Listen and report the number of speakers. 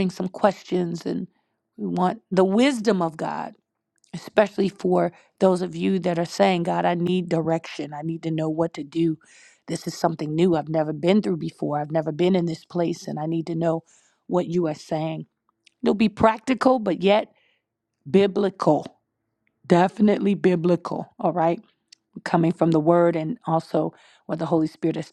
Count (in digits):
1